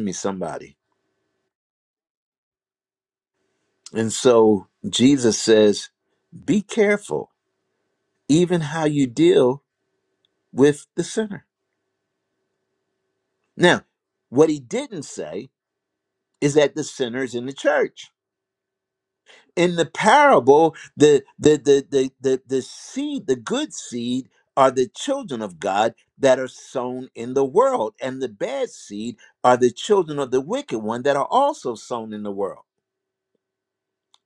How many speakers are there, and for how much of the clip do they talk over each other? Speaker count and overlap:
one, no overlap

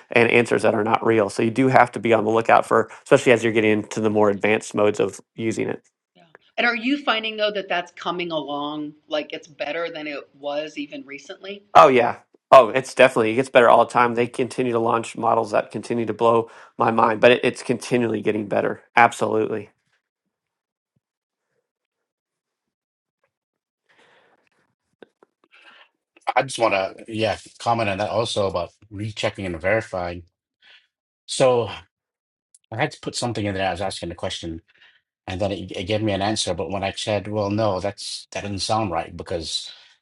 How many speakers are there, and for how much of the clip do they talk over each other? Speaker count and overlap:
three, no overlap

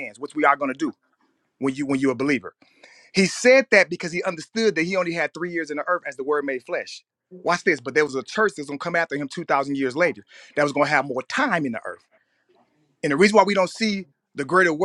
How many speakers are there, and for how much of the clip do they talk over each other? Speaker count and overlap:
one, no overlap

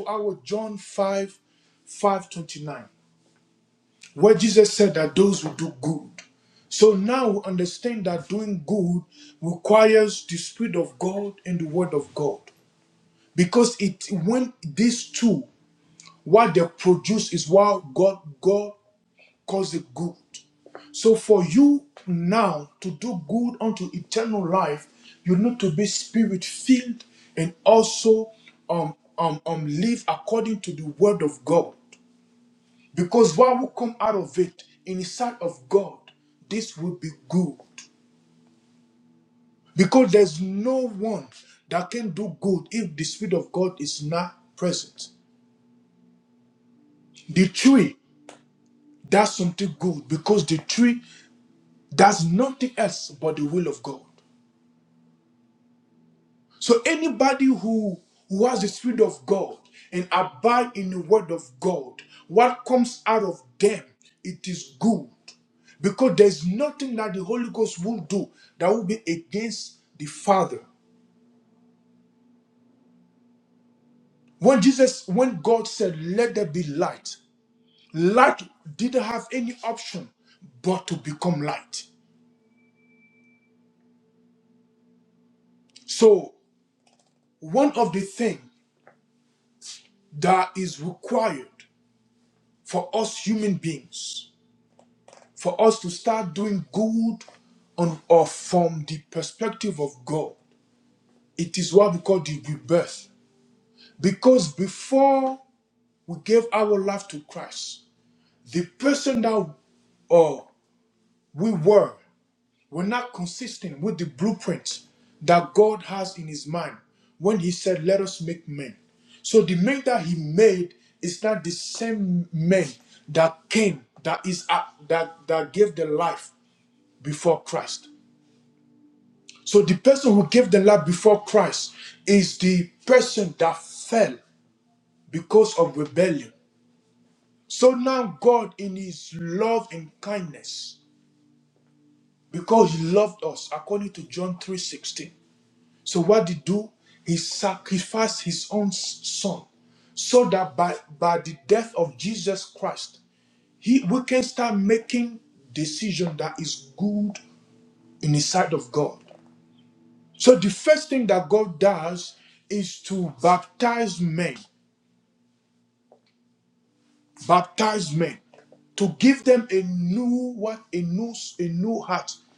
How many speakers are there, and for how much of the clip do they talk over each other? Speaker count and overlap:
one, no overlap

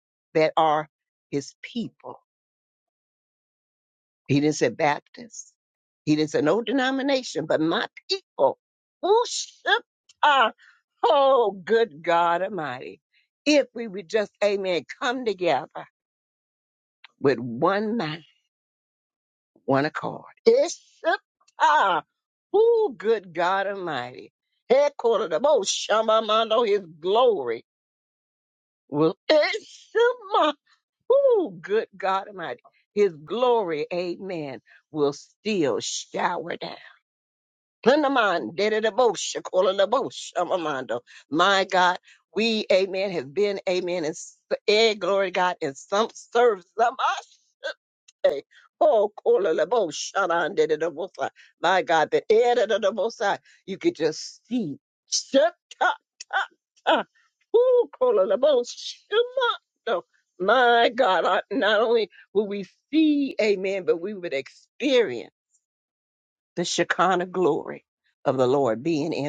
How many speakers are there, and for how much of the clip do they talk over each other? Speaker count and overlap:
one, no overlap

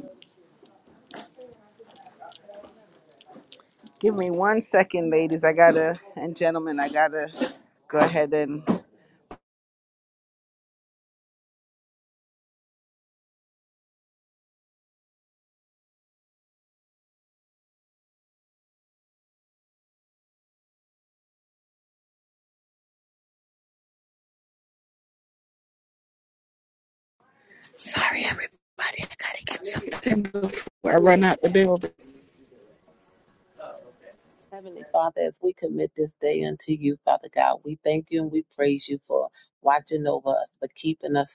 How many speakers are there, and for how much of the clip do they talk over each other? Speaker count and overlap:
two, no overlap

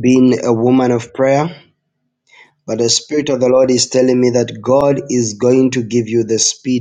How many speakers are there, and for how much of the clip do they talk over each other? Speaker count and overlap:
one, no overlap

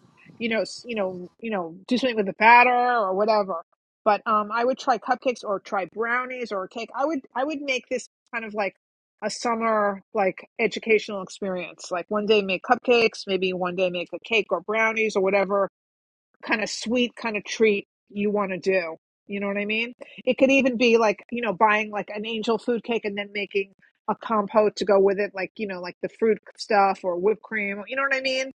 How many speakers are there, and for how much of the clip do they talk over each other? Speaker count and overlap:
one, no overlap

